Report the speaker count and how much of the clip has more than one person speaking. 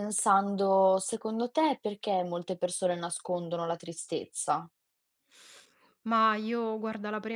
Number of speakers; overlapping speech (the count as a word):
two, no overlap